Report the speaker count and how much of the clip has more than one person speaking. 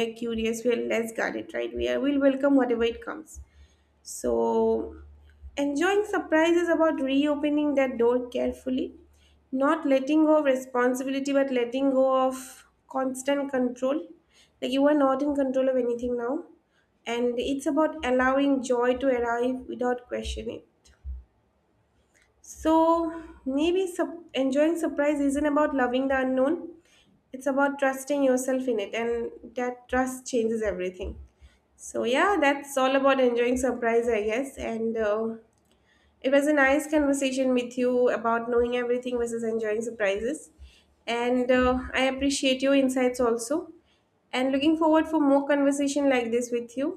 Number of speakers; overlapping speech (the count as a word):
one, no overlap